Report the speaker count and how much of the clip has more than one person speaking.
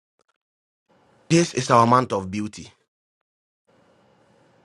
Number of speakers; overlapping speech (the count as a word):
one, no overlap